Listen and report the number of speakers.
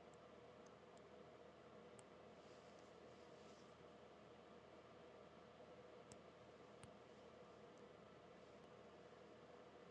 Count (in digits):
0